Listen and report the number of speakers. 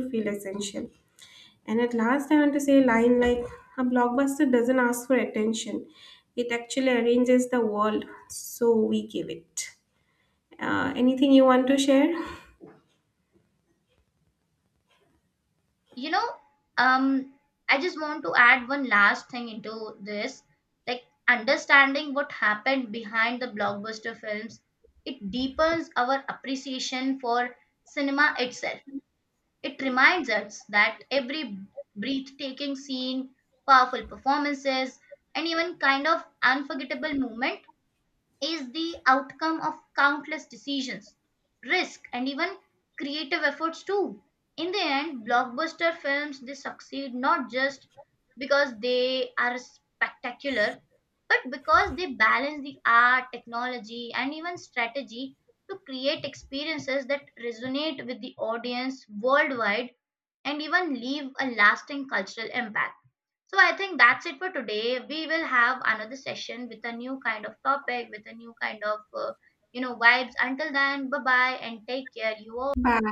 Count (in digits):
2